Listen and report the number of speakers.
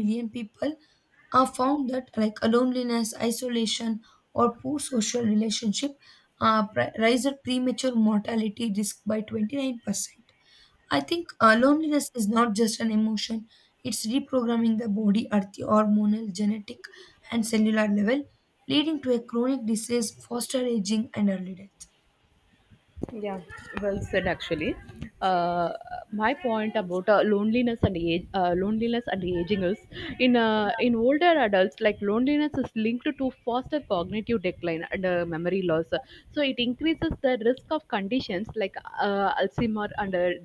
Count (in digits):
2